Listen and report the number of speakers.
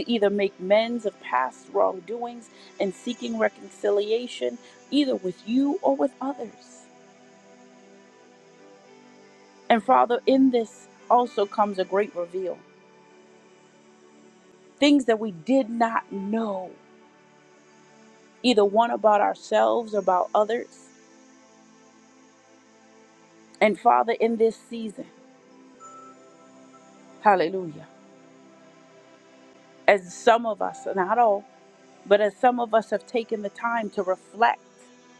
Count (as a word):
one